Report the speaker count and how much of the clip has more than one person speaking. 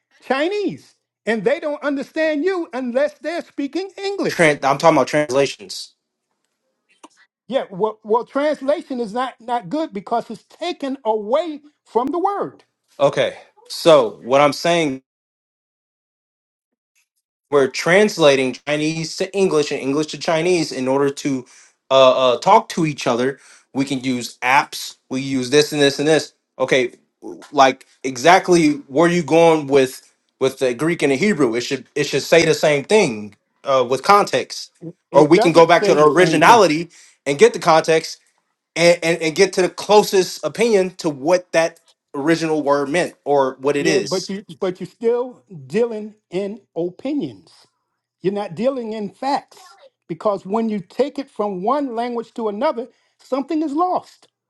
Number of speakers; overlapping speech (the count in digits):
2, about 3%